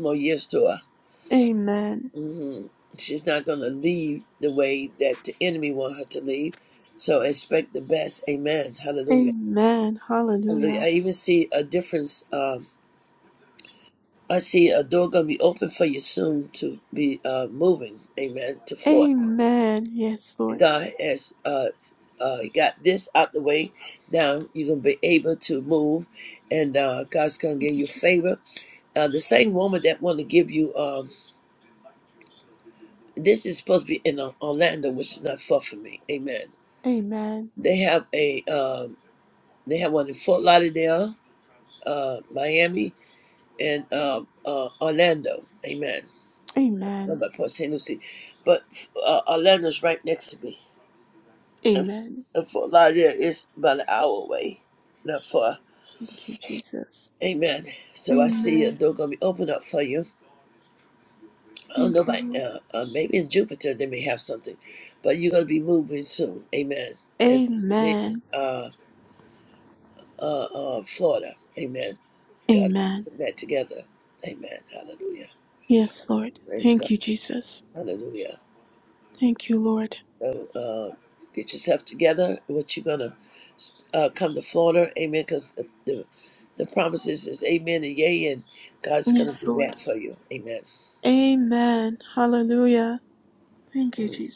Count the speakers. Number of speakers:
two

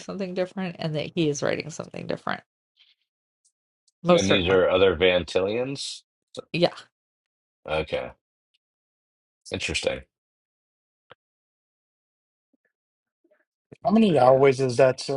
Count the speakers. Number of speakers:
three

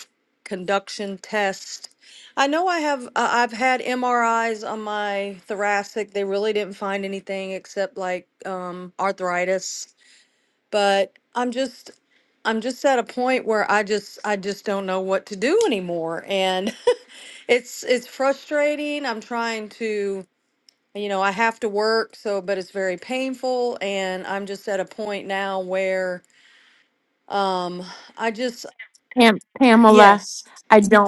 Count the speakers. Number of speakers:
two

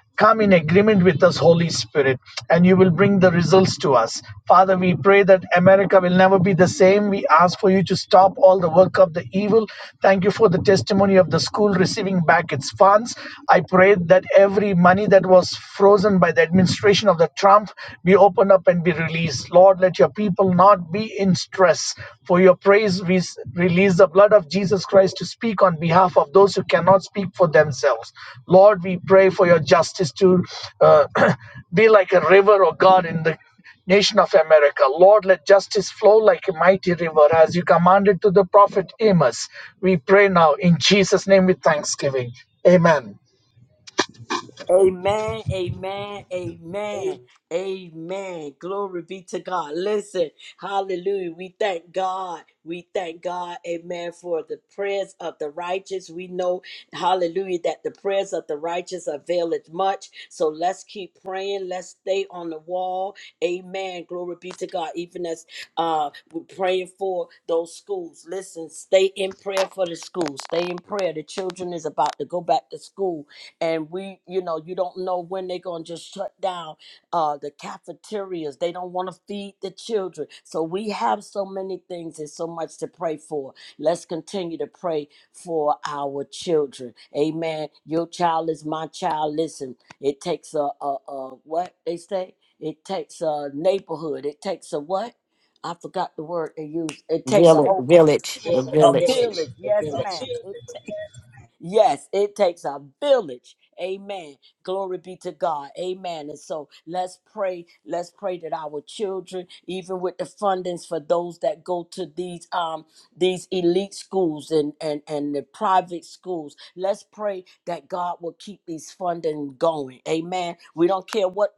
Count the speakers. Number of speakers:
three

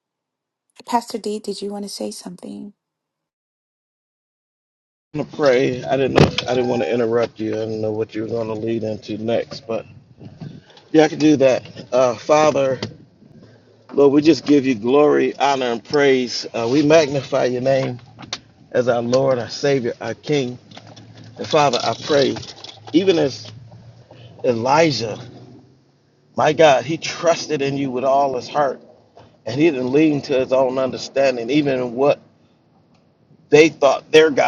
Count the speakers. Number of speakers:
two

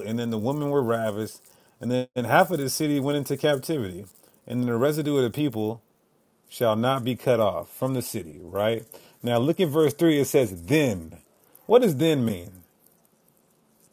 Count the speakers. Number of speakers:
one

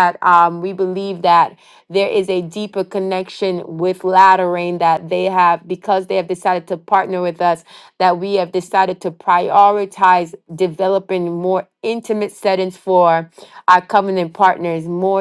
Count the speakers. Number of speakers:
one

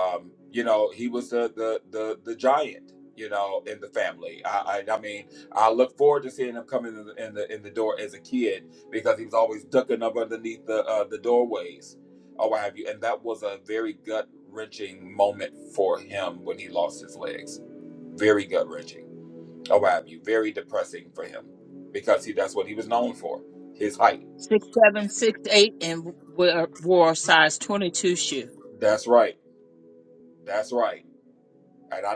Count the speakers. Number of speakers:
two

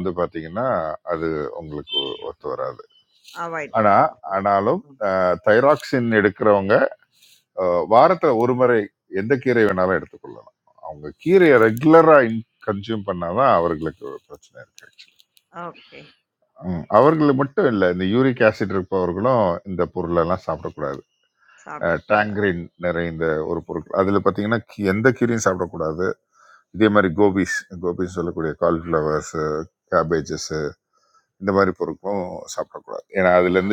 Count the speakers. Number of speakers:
two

